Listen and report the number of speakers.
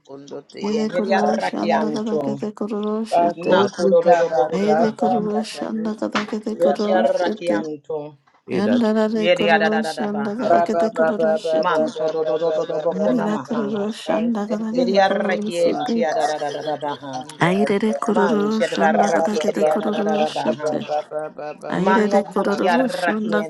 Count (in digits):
3